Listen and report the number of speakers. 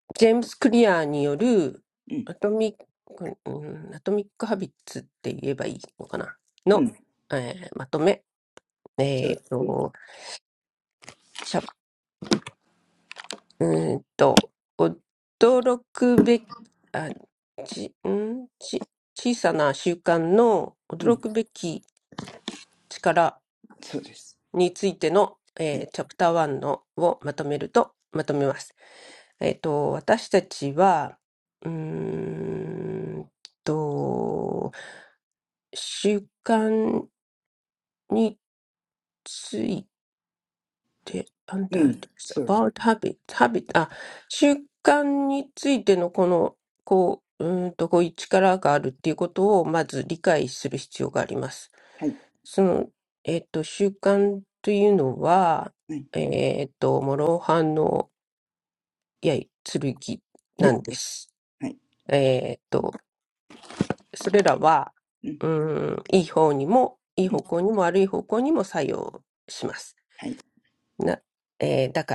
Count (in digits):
2